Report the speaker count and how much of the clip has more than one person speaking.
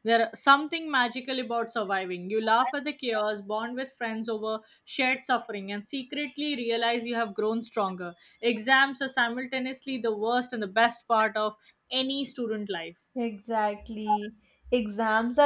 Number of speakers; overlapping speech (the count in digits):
2, no overlap